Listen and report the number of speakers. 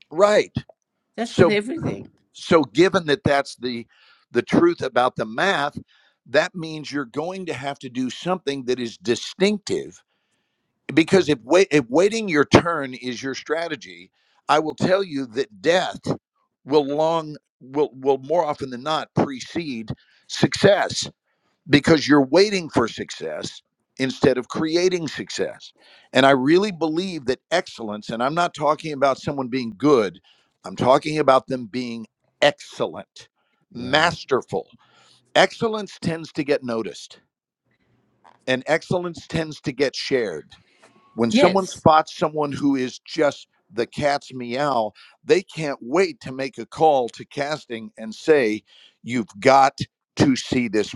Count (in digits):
2